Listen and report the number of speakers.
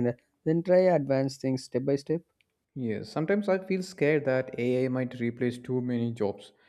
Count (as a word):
two